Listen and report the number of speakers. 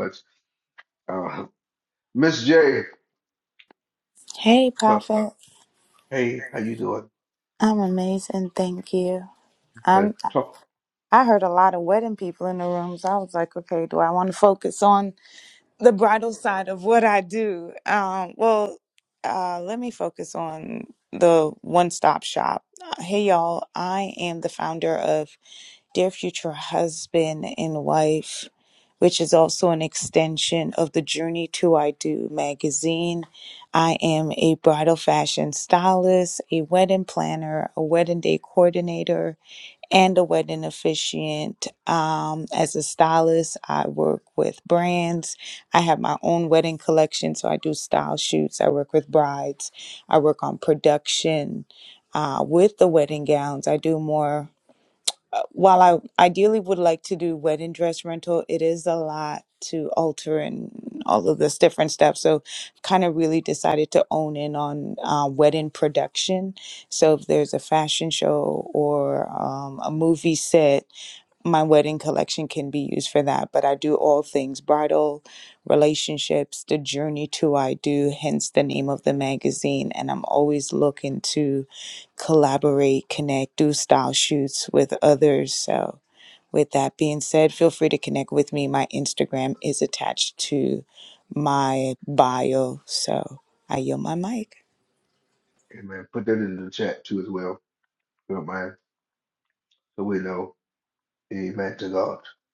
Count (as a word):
two